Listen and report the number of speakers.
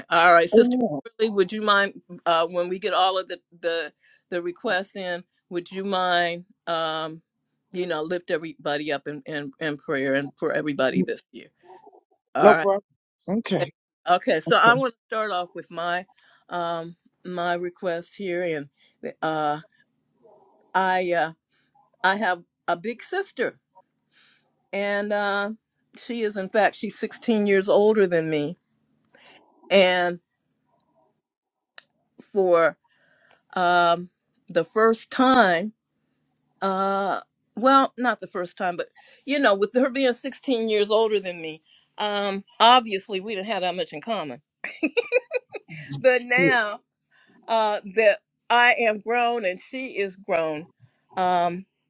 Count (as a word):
two